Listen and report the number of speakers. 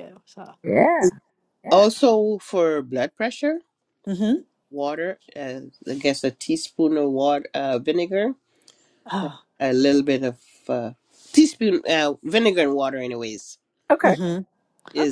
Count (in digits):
3